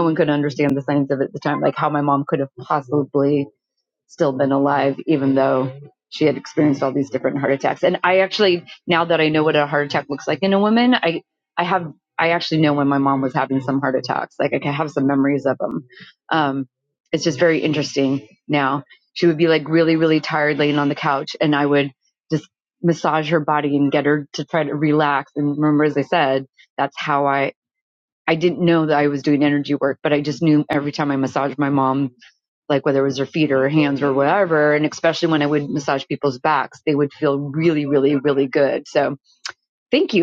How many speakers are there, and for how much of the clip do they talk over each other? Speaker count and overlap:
1, no overlap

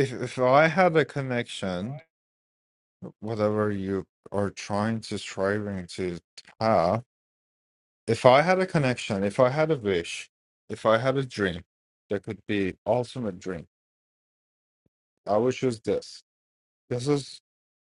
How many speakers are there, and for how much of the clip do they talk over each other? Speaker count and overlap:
1, no overlap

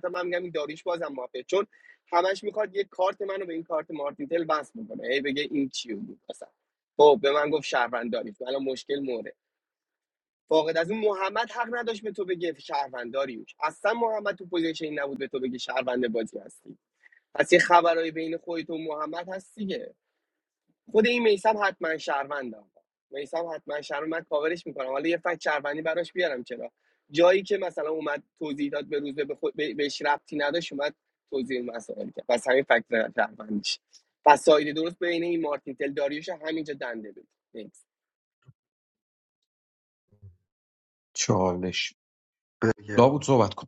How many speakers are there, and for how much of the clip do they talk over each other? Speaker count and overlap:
2, no overlap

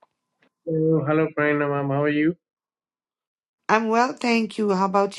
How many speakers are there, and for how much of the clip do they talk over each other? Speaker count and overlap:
2, no overlap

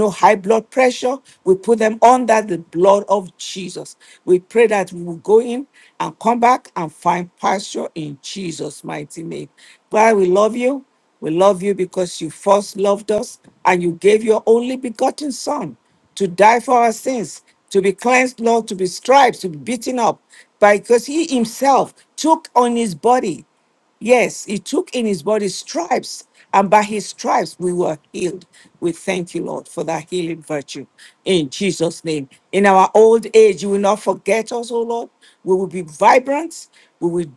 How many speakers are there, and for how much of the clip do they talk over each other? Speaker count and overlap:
1, no overlap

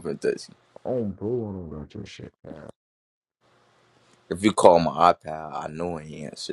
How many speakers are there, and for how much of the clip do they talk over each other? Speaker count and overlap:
2, no overlap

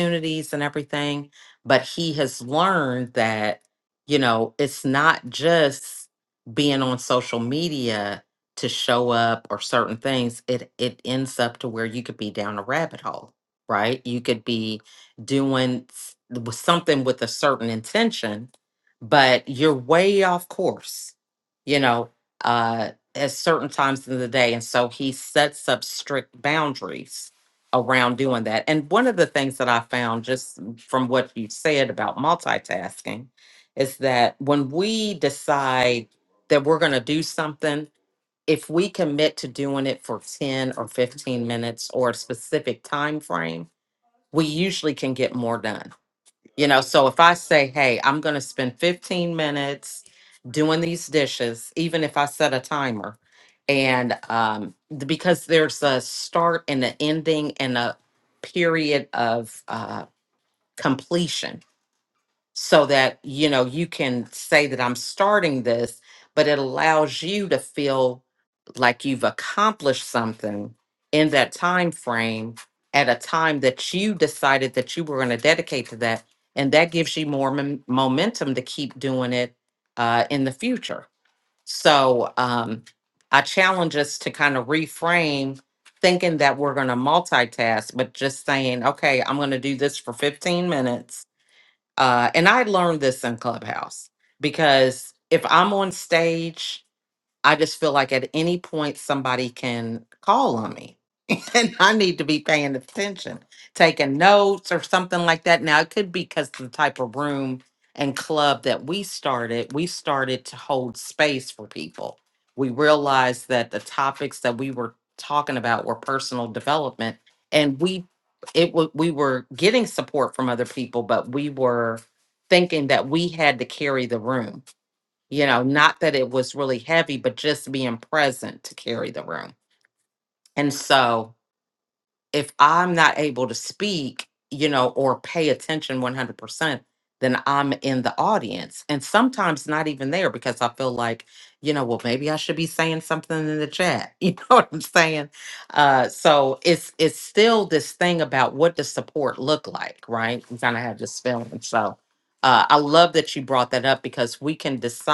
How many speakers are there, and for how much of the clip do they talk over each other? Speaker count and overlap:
1, no overlap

